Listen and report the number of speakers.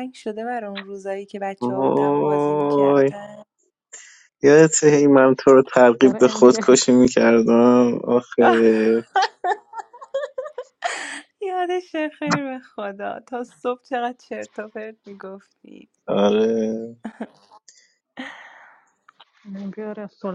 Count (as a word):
three